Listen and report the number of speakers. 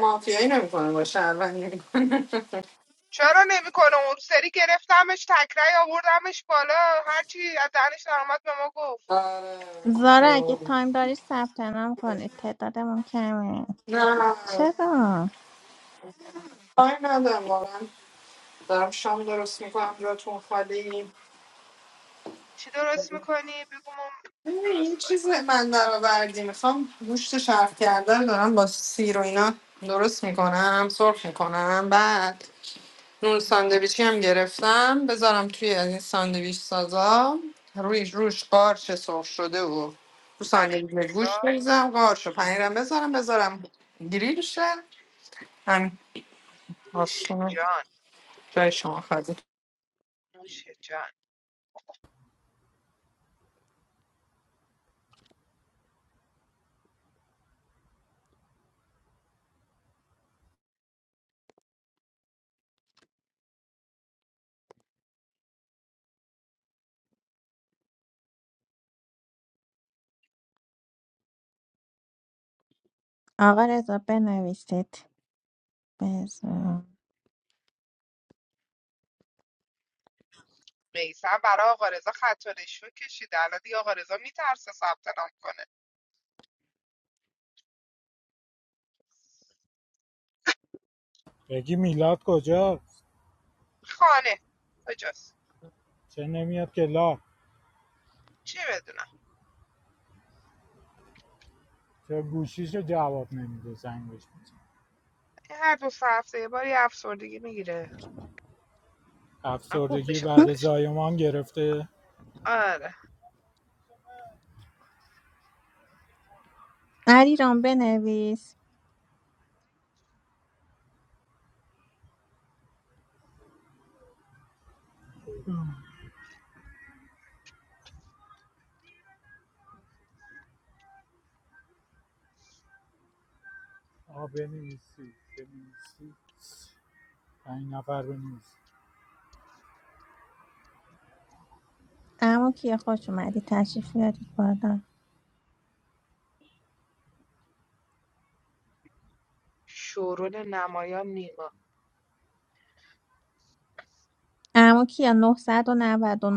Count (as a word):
four